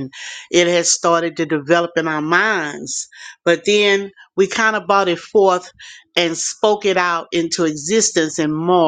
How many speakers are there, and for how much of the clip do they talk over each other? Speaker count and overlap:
one, no overlap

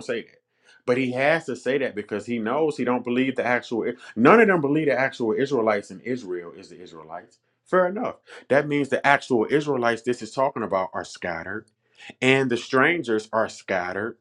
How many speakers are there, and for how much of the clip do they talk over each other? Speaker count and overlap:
one, no overlap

